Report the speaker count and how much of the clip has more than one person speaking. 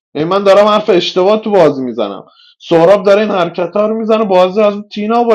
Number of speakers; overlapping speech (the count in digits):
1, no overlap